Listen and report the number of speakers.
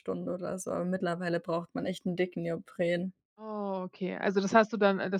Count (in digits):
2